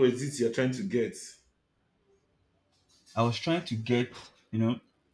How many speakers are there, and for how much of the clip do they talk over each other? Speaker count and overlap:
two, no overlap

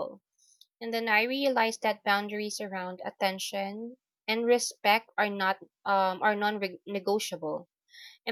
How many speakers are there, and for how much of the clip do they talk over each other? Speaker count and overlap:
one, no overlap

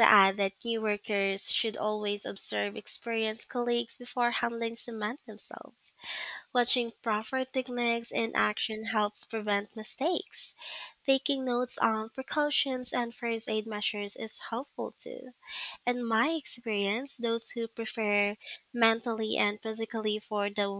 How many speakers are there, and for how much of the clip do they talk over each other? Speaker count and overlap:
one, no overlap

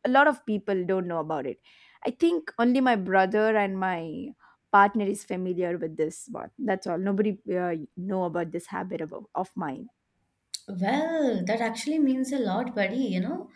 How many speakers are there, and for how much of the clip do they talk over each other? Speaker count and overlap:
two, no overlap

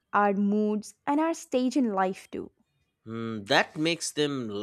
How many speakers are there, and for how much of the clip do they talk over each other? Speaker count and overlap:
two, no overlap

